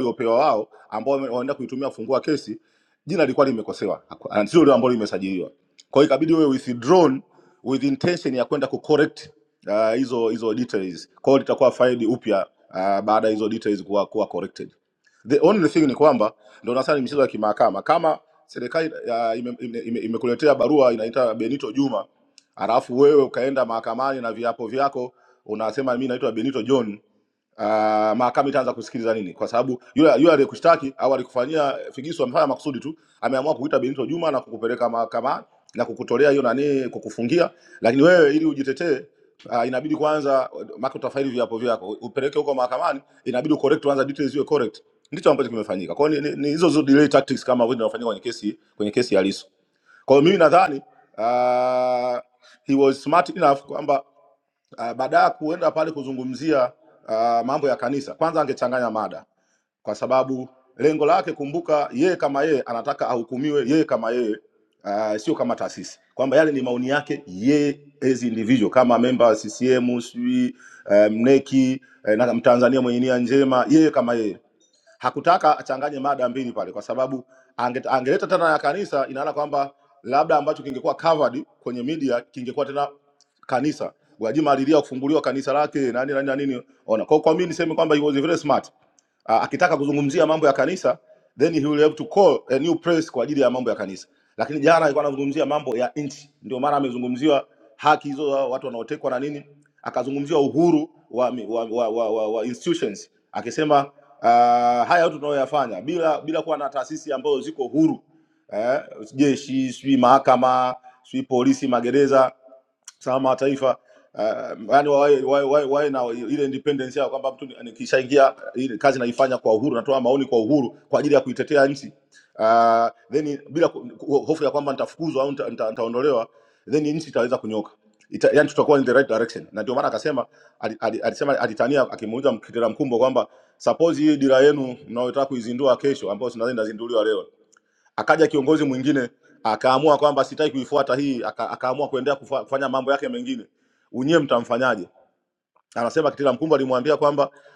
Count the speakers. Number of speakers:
1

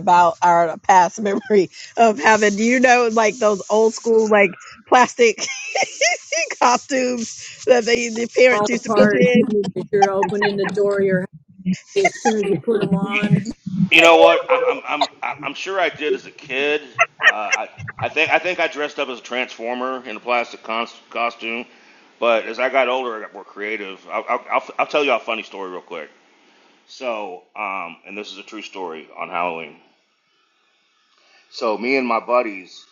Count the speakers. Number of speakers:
3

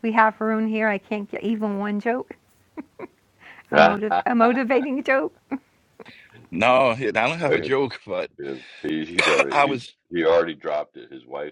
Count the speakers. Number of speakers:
3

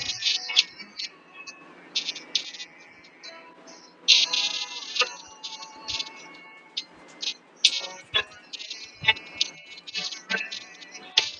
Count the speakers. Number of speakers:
0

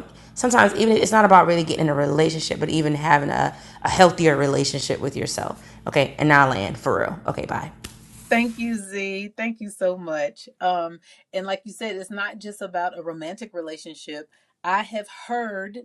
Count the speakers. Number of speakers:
2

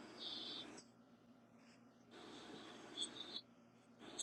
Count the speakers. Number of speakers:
0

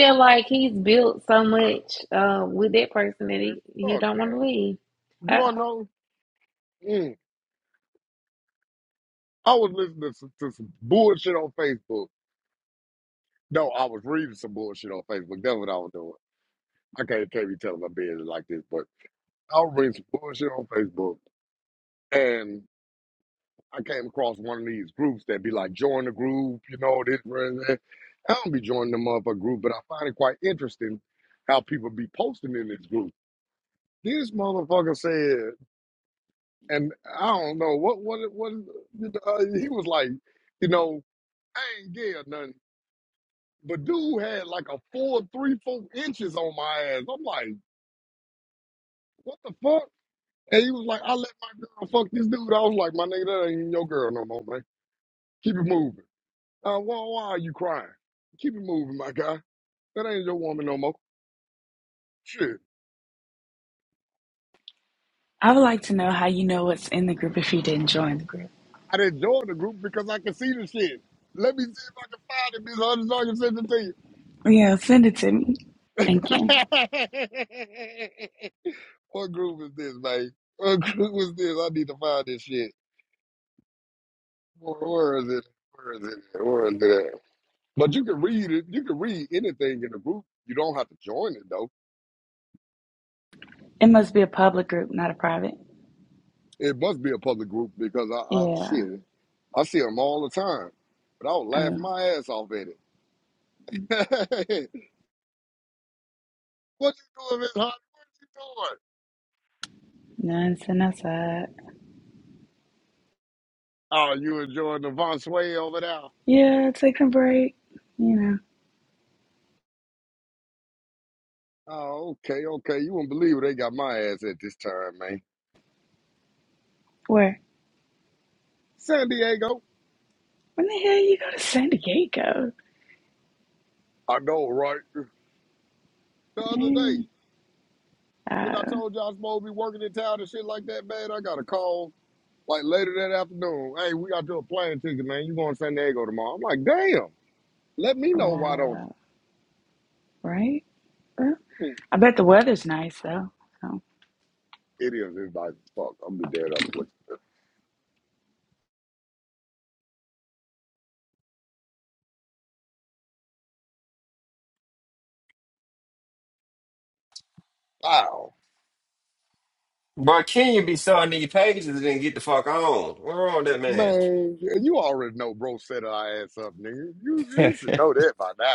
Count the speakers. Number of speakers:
4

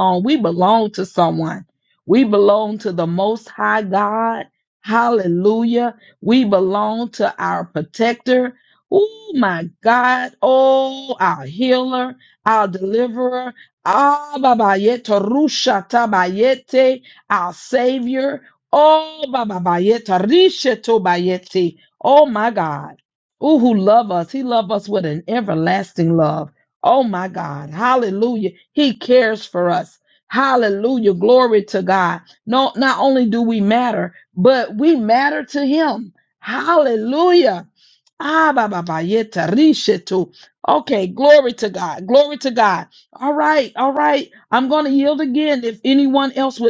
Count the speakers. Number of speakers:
1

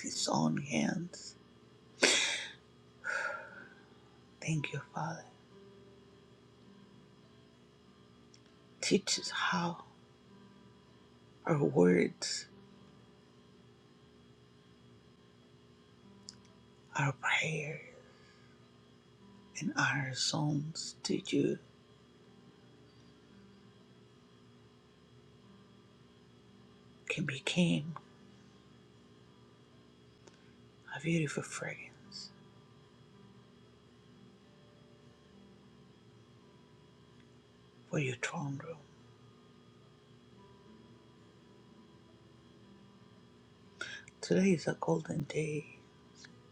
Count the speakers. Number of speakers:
1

